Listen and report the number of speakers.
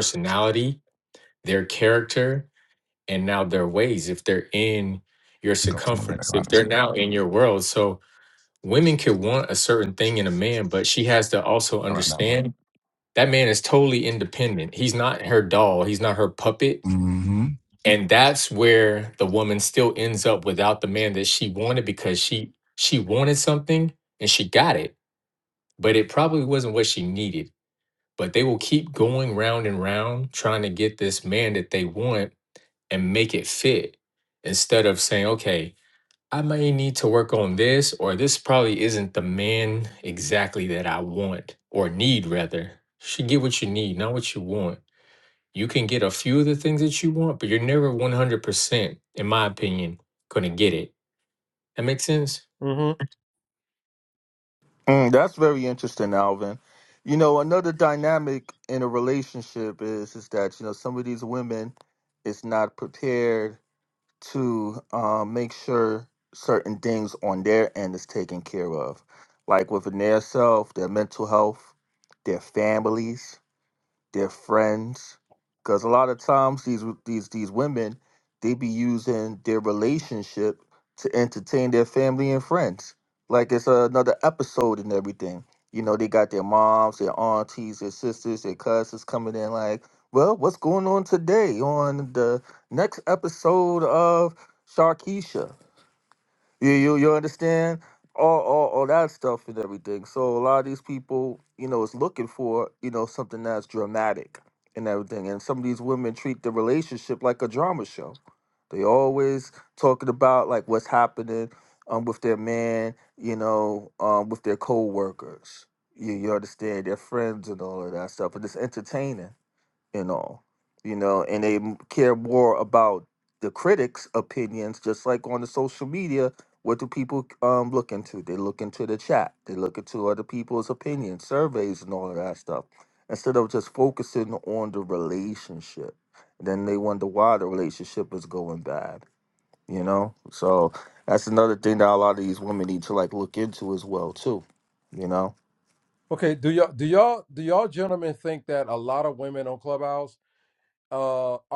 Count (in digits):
4